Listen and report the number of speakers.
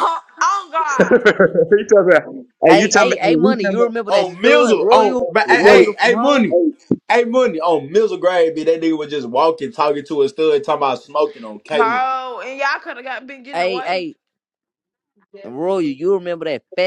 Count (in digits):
4